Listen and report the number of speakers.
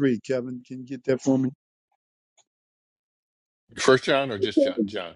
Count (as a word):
two